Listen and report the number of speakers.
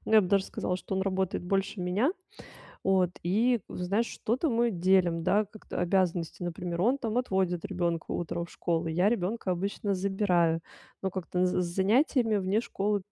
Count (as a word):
one